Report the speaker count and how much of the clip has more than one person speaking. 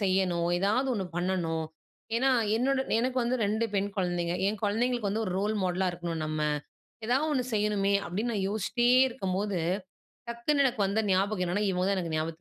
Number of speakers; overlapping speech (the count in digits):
1, no overlap